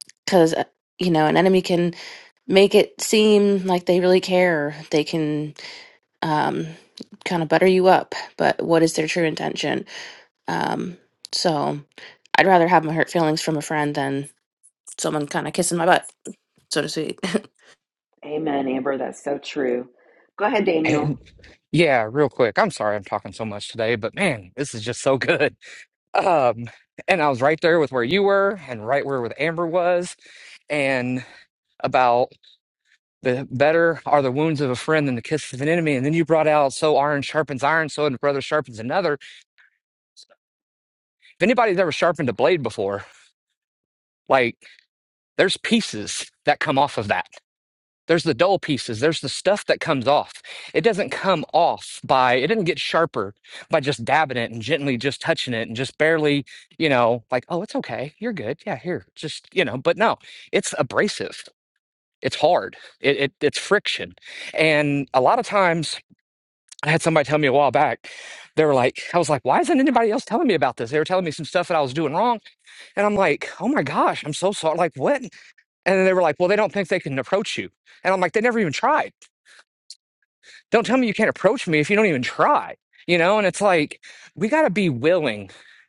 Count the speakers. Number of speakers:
3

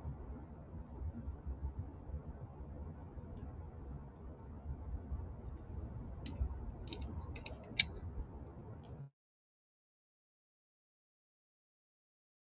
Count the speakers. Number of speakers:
0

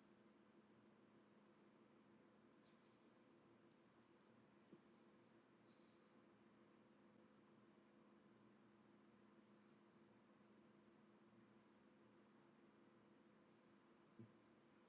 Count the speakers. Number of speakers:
0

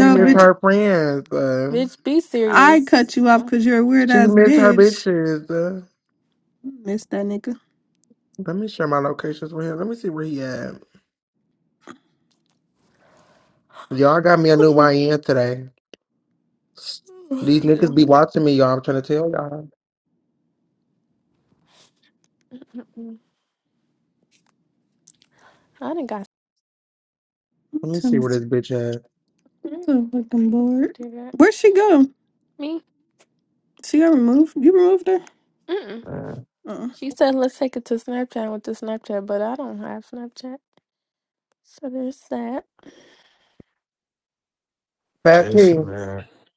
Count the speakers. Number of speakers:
4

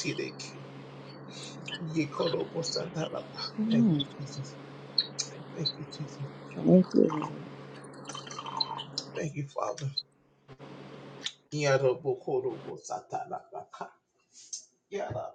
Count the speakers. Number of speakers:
2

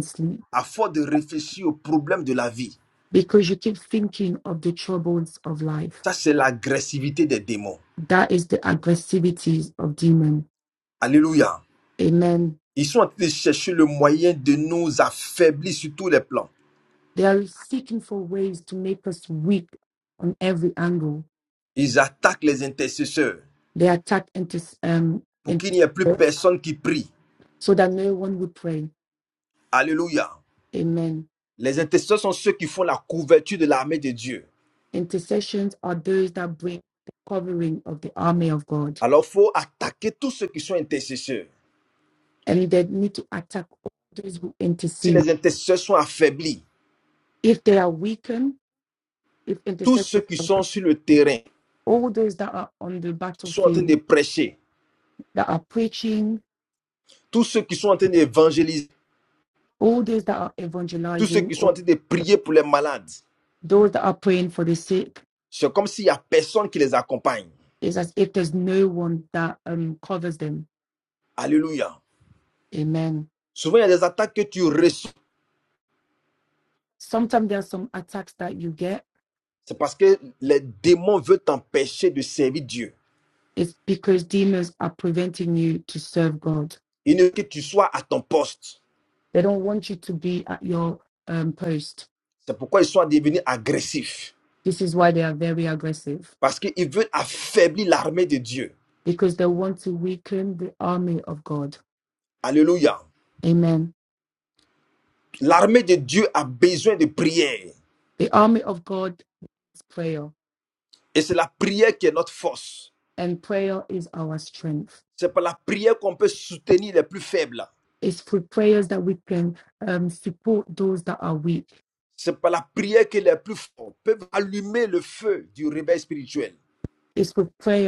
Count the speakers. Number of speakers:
2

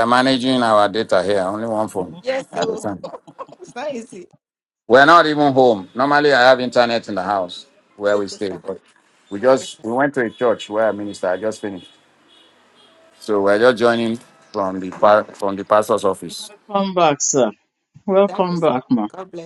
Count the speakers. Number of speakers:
3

